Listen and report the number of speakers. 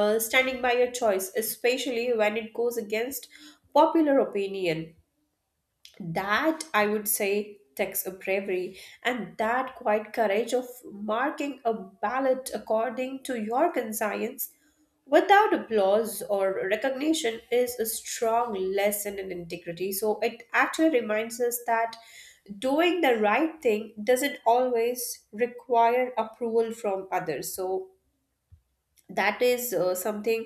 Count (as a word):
one